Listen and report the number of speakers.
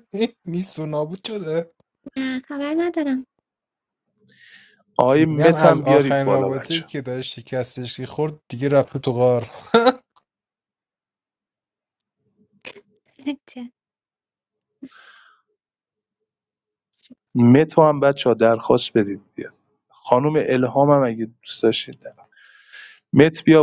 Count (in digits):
3